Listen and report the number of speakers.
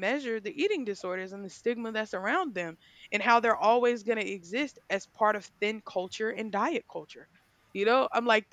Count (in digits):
1